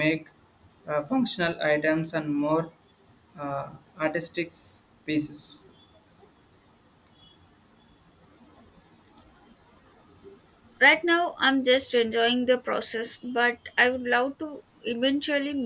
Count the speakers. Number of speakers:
2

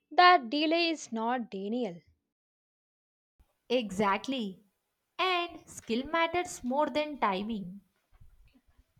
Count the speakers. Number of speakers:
2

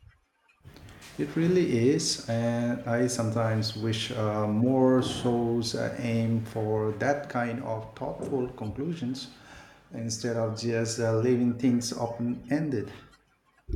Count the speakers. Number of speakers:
1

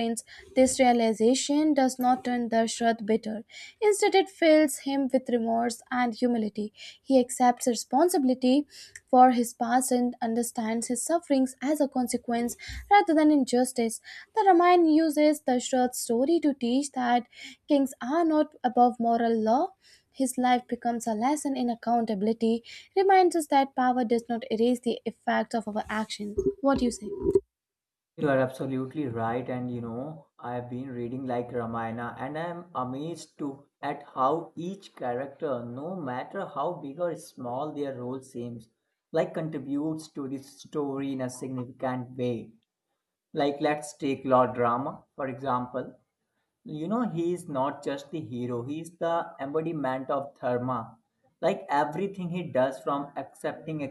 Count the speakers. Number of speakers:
2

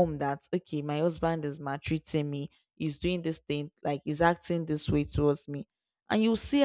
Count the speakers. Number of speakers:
1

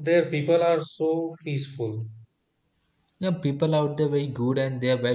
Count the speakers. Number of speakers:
2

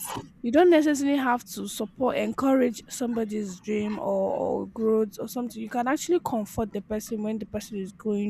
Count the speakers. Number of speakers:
1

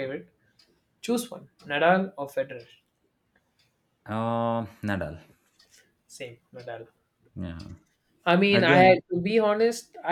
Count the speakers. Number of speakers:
2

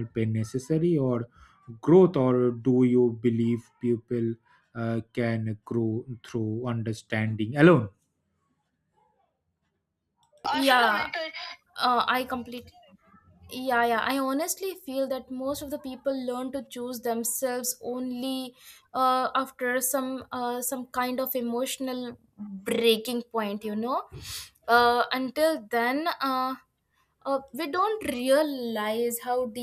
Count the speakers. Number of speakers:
2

